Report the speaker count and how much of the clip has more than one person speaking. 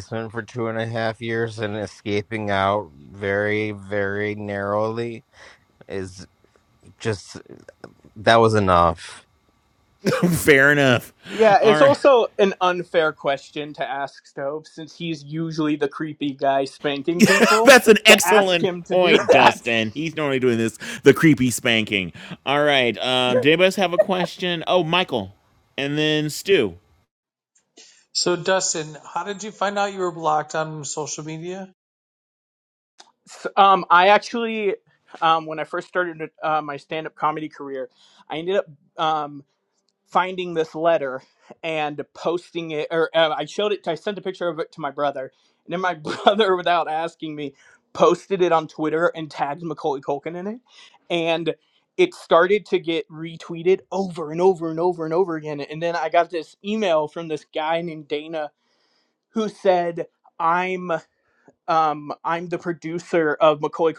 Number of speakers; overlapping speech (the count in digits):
4, about 3%